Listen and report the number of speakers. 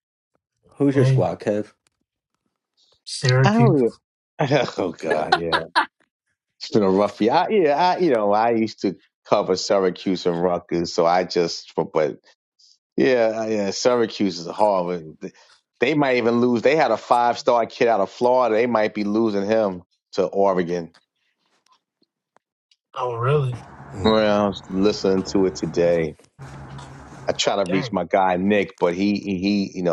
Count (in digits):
3